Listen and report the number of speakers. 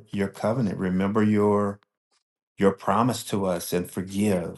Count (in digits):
1